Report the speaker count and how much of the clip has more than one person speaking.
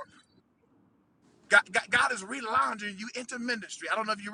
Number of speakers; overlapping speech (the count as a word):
one, no overlap